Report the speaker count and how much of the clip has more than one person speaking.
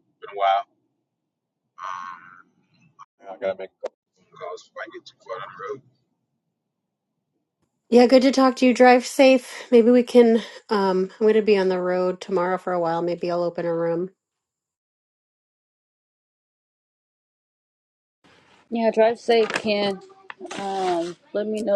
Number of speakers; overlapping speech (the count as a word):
three, no overlap